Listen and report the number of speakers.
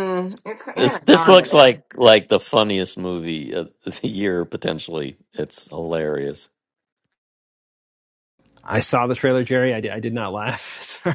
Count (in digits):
3